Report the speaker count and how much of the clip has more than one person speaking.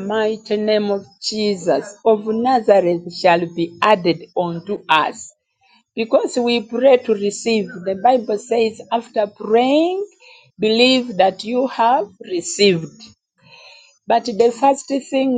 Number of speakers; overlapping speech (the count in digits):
1, no overlap